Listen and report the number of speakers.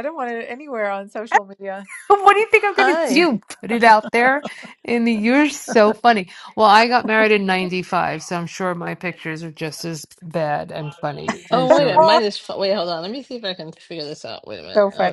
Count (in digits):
3